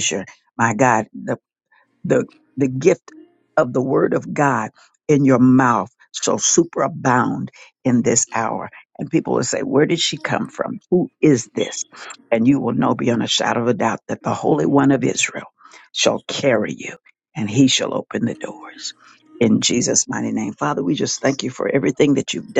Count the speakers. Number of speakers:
1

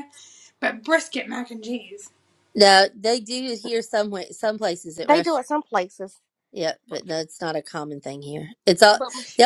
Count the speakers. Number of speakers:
3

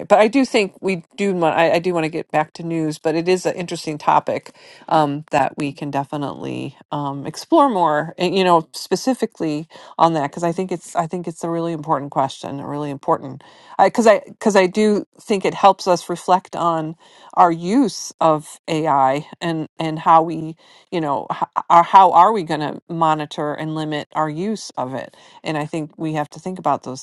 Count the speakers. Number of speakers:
1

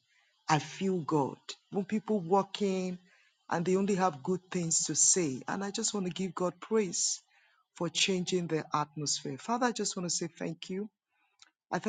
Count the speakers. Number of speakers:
1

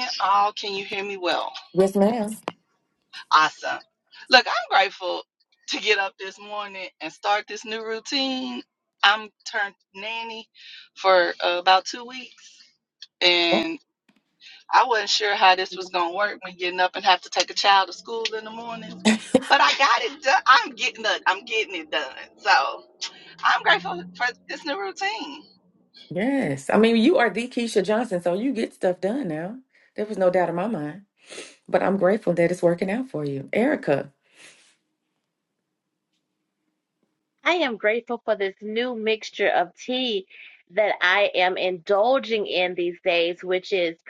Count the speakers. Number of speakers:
3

